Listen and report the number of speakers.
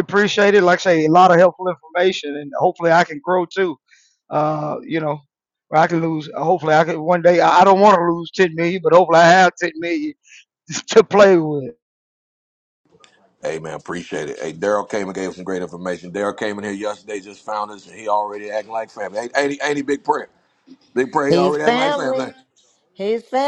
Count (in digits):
3